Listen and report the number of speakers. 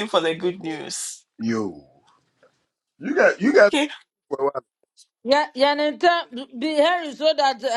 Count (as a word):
three